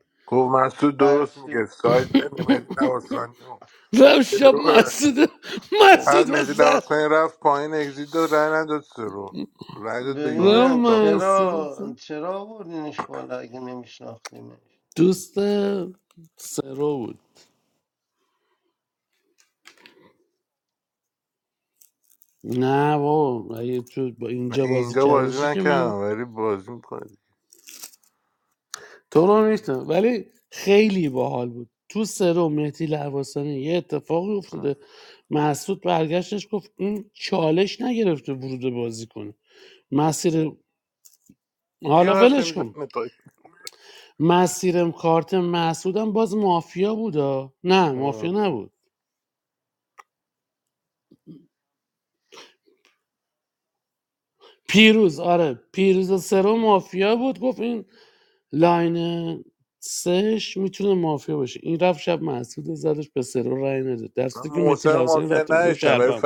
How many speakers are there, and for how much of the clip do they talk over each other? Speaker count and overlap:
three, about 12%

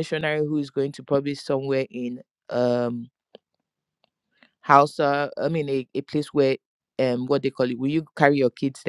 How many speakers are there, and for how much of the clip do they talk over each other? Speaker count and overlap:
one, no overlap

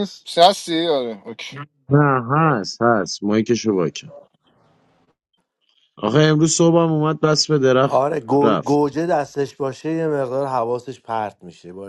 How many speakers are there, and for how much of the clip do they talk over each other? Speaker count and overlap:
three, about 3%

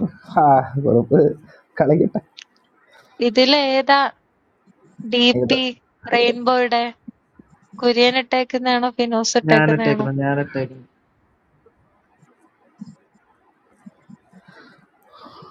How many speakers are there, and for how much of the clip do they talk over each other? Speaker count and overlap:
three, about 5%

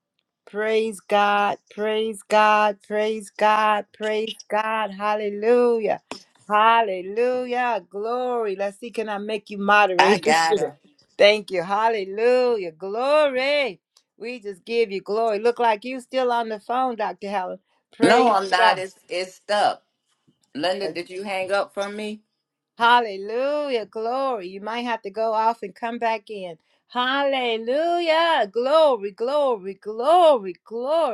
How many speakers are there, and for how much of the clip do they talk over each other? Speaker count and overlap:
two, about 4%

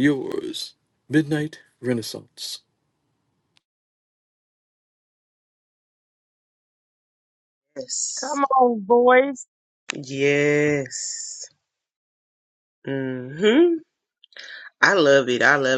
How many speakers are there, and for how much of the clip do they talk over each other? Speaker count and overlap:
three, under 1%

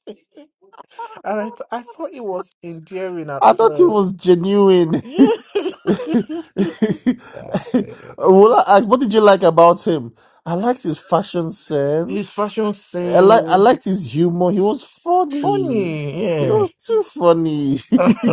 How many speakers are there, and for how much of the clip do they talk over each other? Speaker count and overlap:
two, about 11%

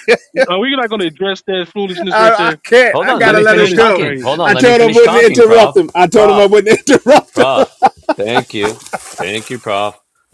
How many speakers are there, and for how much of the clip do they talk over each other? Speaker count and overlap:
three, about 37%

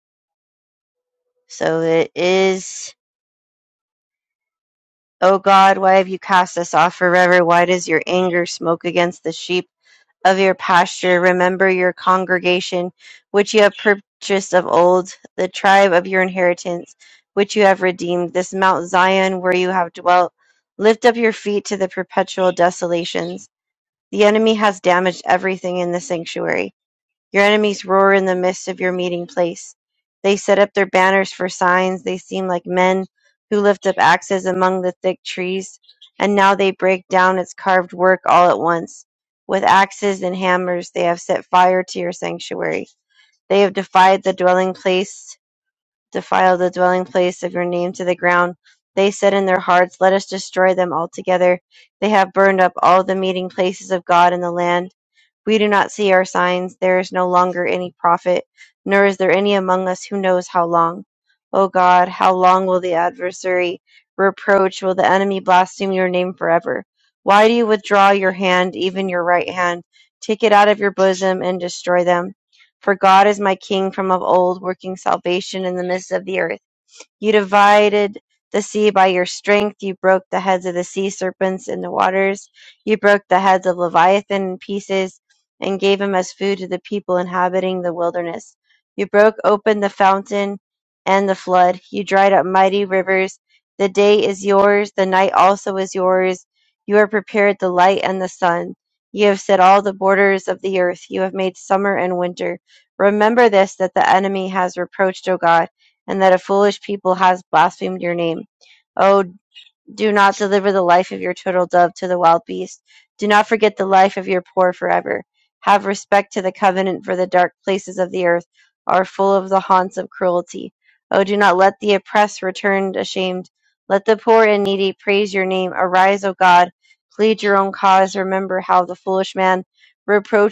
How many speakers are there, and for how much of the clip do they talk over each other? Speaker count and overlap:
one, no overlap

